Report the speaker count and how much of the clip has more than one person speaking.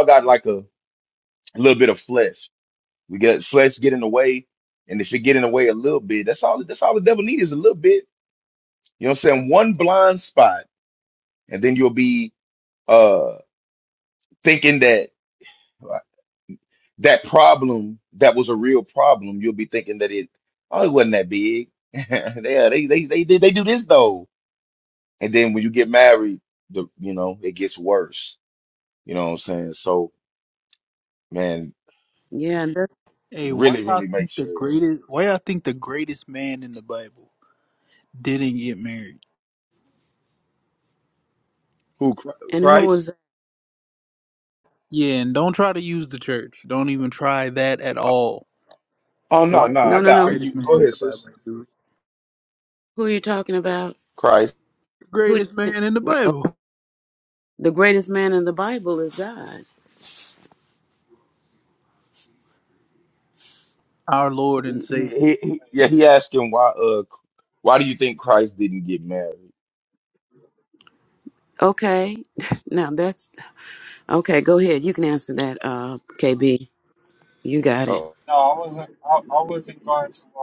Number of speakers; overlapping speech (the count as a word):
four, about 5%